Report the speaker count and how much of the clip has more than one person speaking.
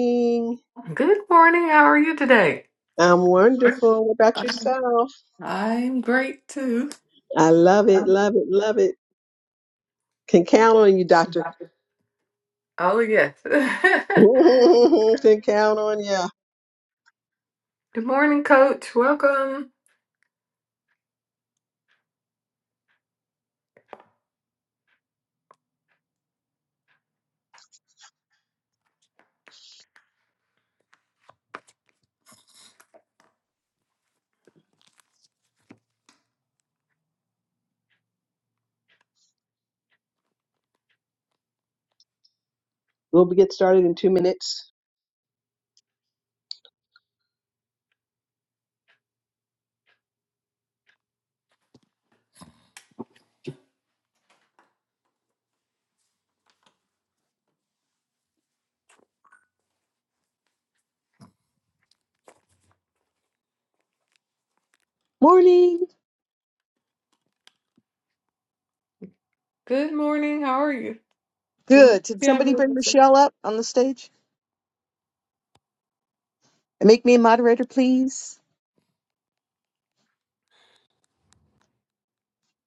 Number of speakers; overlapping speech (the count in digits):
3, about 1%